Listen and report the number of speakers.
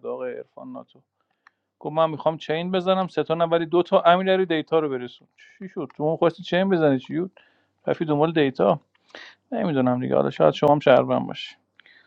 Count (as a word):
one